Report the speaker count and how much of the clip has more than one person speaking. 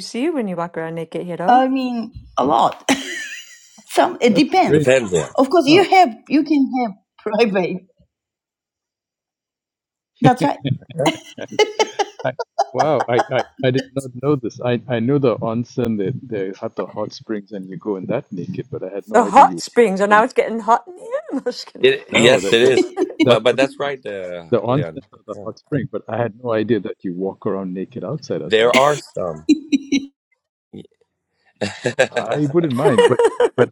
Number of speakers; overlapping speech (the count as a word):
four, about 11%